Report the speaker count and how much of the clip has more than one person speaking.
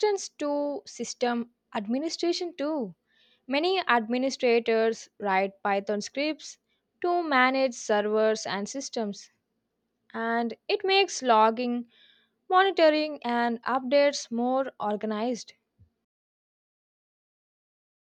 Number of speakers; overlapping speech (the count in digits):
1, no overlap